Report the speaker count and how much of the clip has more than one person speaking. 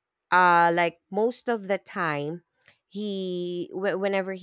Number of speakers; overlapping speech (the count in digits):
1, no overlap